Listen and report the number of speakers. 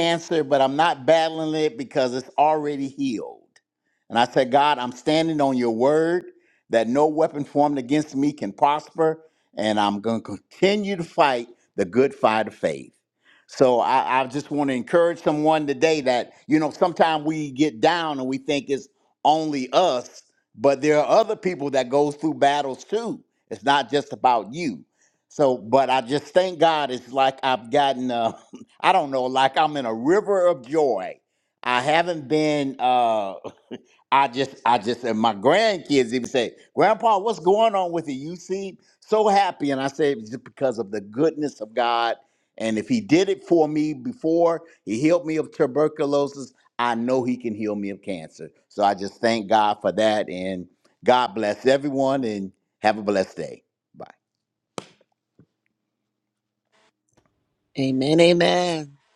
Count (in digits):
2